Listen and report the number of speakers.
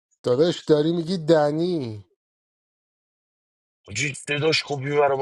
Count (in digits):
2